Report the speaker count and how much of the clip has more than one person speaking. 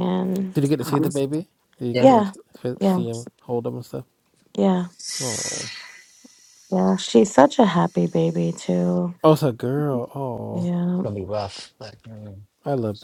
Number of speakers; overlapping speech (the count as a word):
three, about 10%